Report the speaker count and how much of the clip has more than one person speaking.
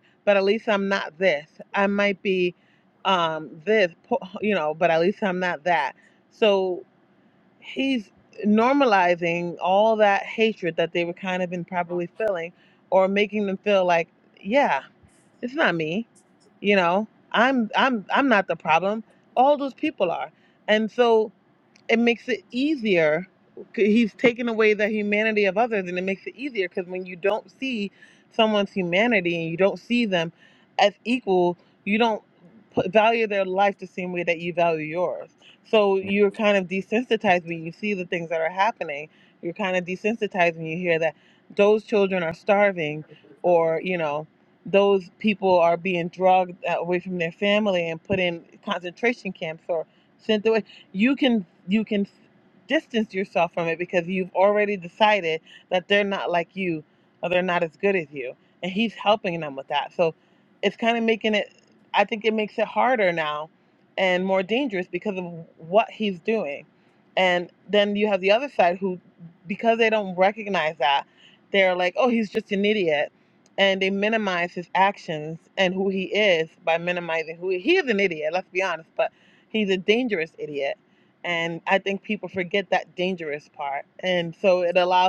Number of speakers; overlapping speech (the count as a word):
one, no overlap